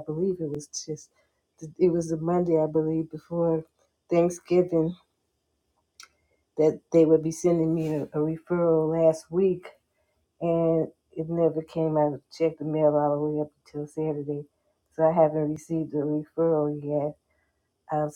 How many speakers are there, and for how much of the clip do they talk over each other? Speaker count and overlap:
1, no overlap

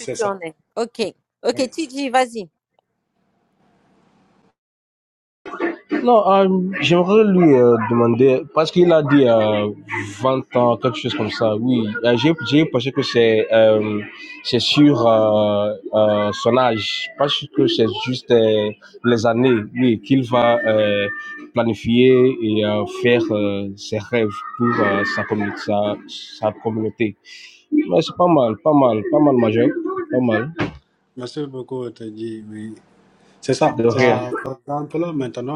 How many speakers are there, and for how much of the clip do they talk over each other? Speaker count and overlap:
3, about 3%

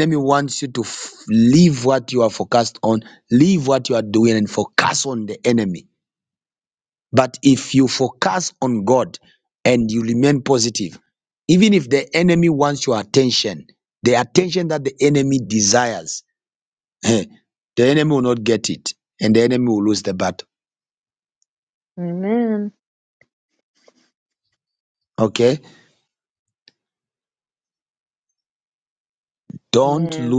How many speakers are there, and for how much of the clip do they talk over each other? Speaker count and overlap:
2, about 2%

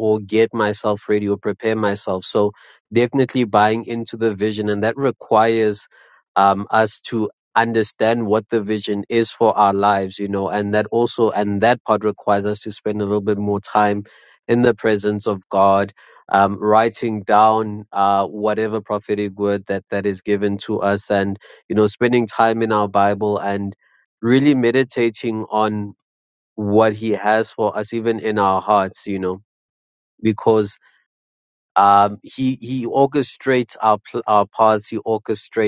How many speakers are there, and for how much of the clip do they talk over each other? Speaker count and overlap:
1, no overlap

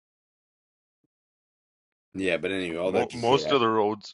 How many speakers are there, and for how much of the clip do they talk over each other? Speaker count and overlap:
2, about 18%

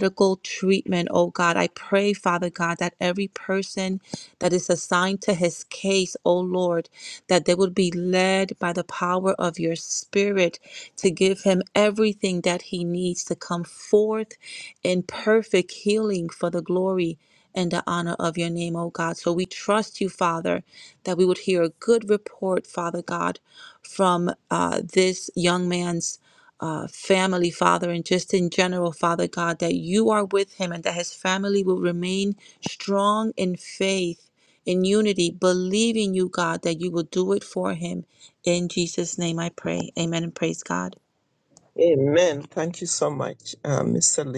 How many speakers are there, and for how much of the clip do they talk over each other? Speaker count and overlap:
2, no overlap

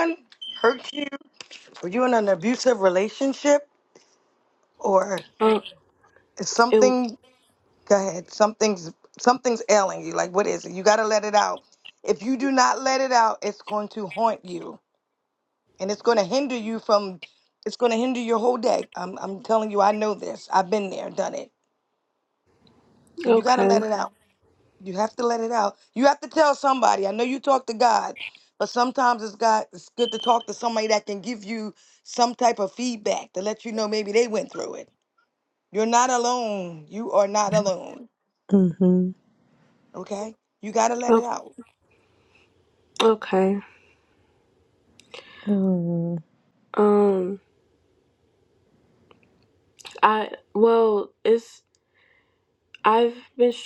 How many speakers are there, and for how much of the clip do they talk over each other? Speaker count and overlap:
3, about 2%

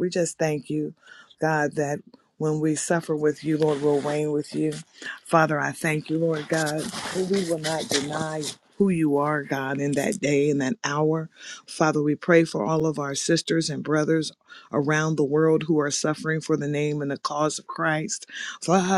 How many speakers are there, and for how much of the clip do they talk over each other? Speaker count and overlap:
1, no overlap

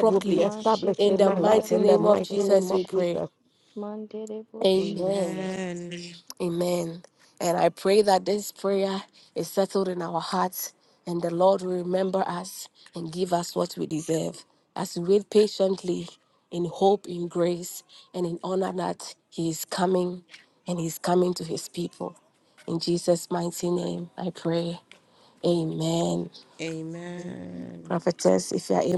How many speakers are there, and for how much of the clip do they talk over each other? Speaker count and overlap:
3, about 14%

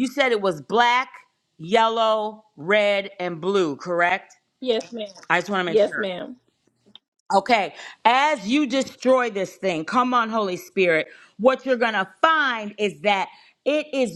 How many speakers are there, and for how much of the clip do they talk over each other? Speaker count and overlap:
2, about 3%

